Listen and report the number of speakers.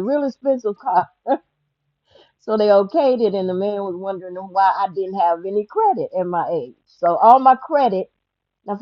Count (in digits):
1